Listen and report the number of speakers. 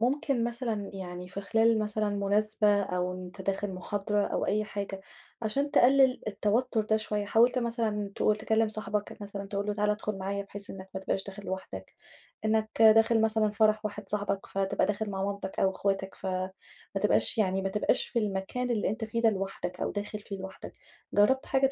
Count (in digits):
1